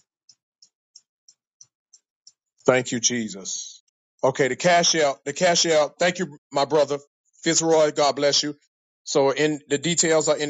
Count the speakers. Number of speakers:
one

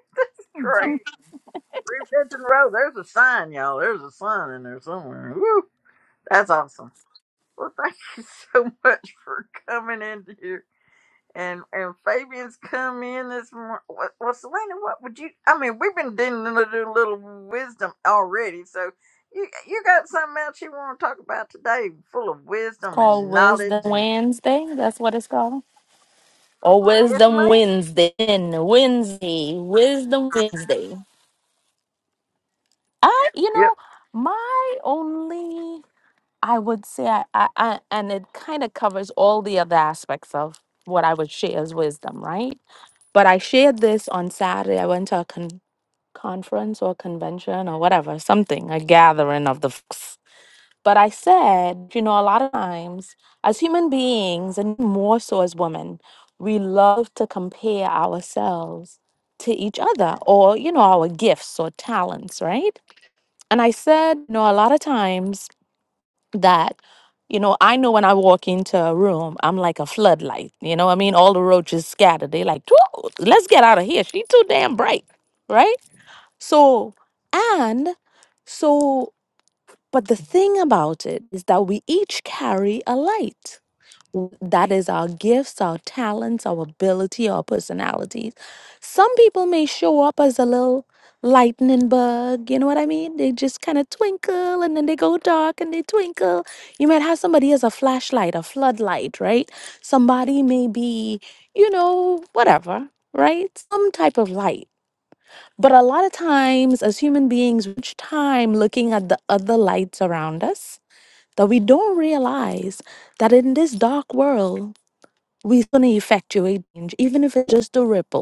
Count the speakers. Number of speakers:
two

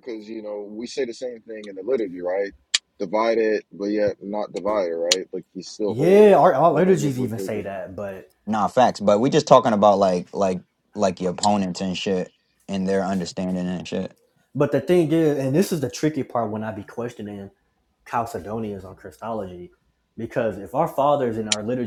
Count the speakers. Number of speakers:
three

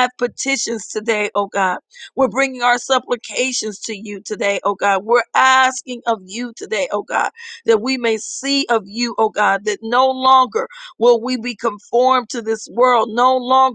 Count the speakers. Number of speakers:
one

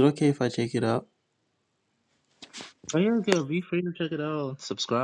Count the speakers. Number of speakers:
two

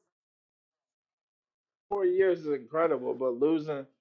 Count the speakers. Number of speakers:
one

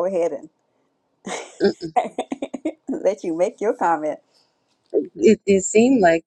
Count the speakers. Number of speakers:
two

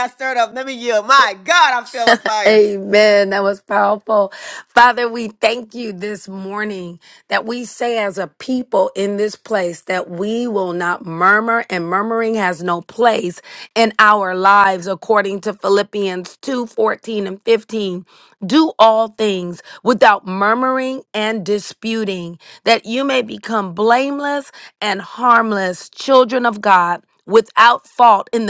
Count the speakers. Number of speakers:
two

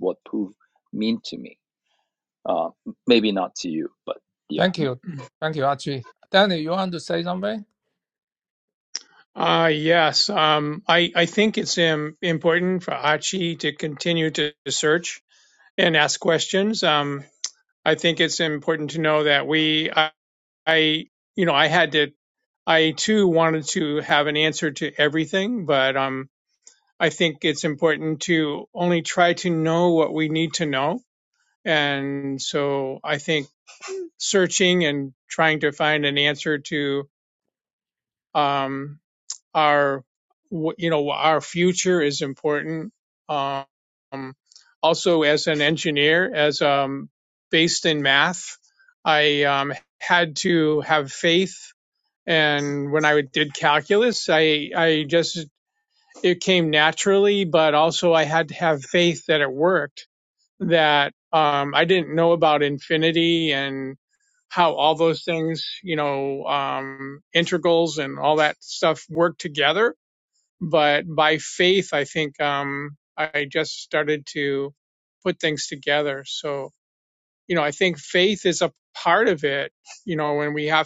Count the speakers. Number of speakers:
three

